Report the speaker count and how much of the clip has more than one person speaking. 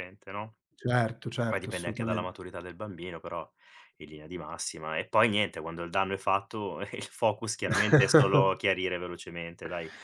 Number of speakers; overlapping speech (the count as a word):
two, about 8%